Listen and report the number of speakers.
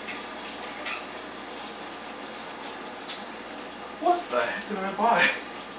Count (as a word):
one